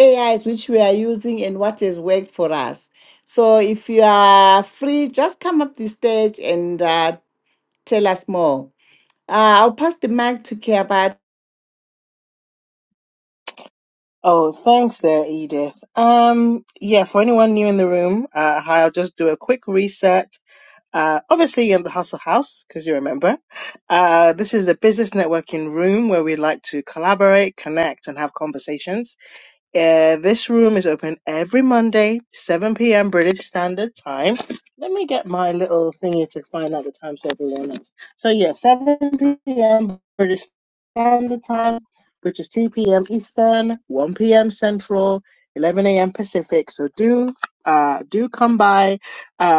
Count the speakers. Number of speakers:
two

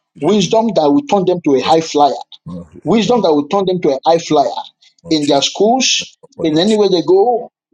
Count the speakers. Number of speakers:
one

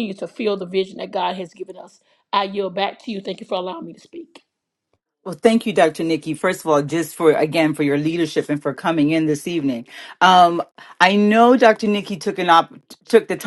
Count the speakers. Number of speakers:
two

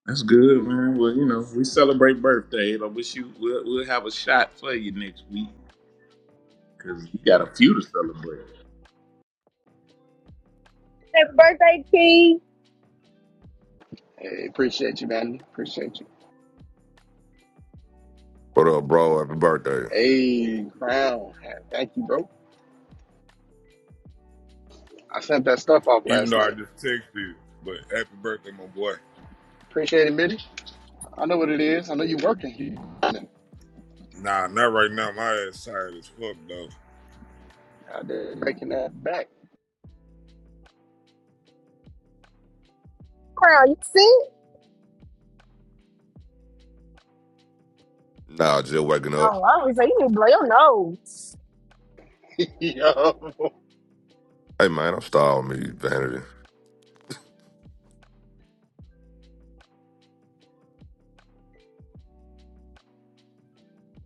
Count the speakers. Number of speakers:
five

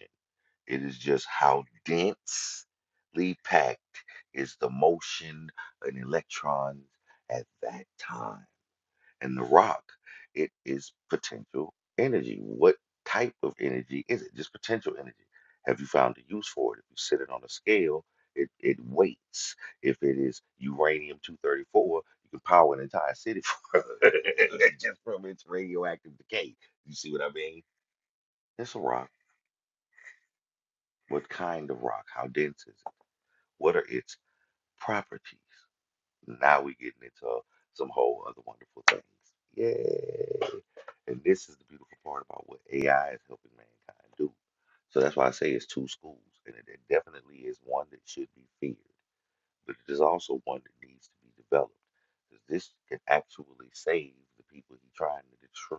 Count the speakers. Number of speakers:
one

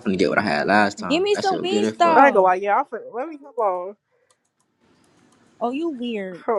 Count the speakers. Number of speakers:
three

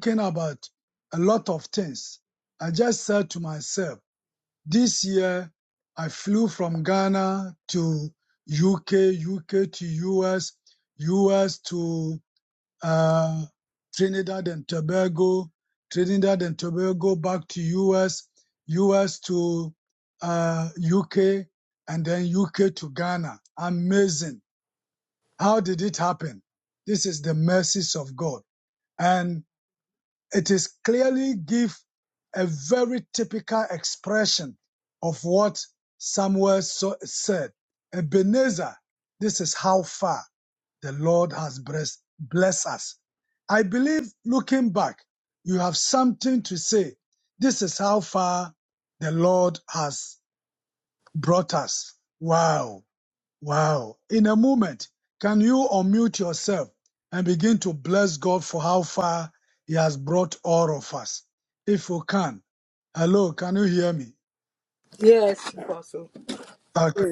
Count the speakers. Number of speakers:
two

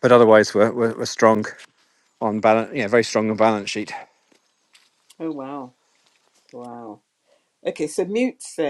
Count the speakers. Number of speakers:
two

